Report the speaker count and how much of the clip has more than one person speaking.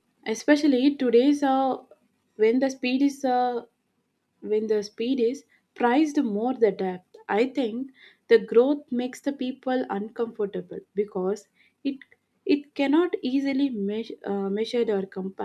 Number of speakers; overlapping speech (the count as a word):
one, no overlap